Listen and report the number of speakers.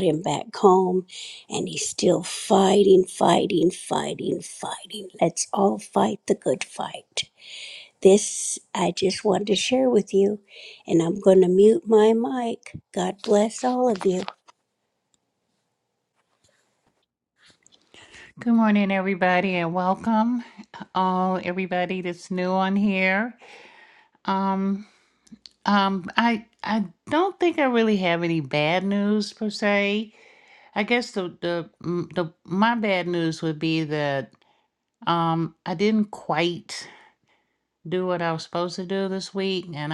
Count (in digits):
2